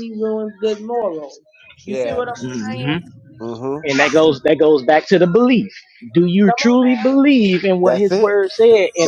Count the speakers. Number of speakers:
3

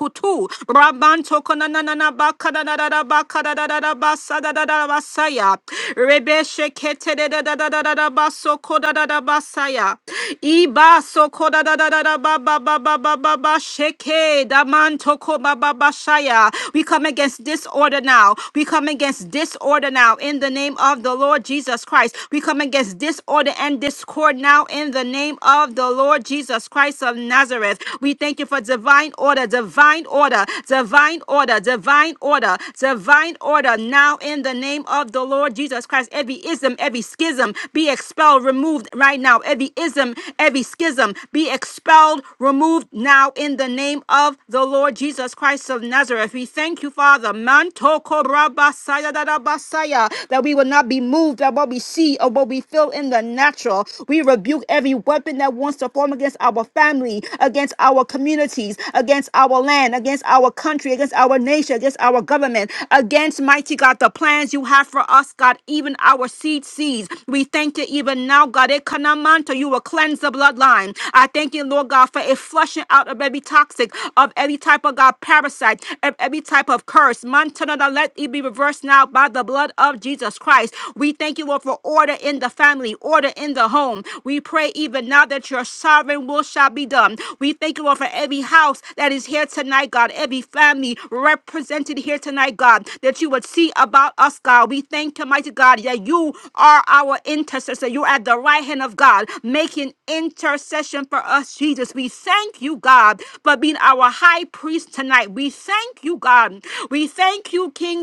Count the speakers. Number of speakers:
1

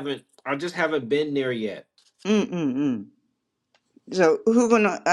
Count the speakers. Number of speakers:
2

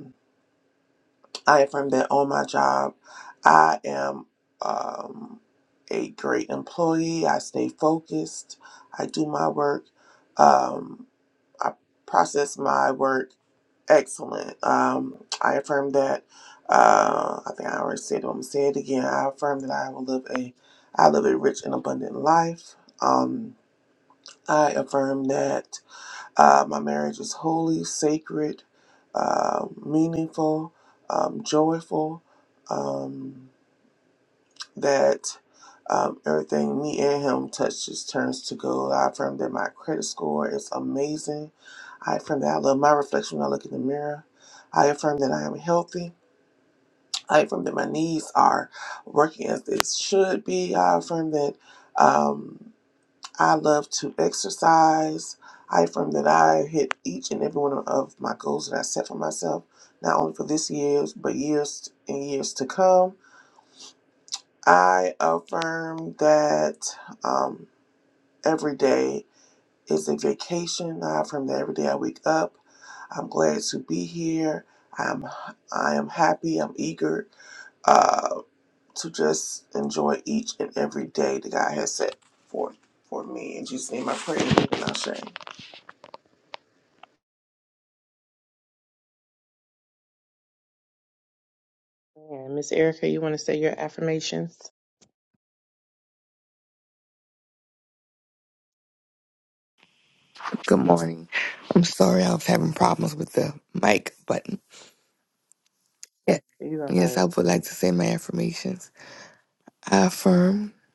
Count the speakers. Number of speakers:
3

